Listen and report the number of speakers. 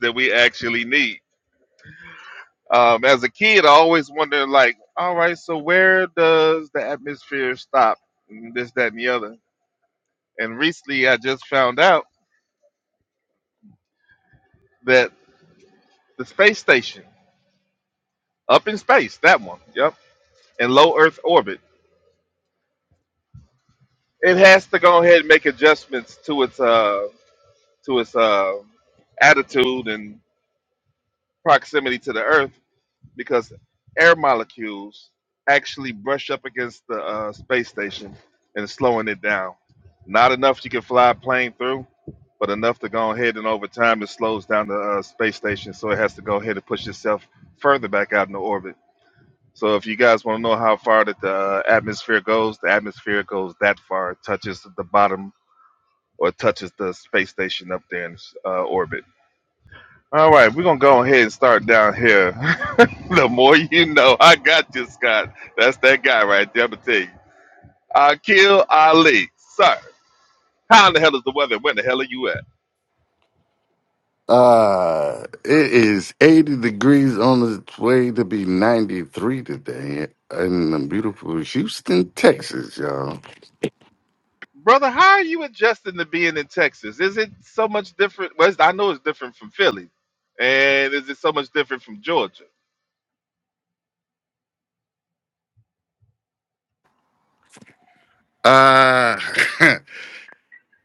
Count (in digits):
2